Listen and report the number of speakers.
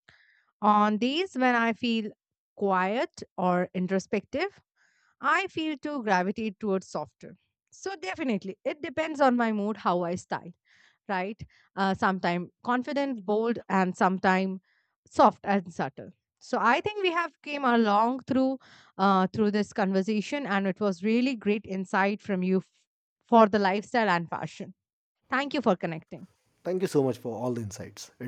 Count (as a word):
two